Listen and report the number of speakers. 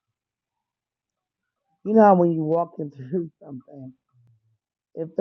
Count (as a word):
one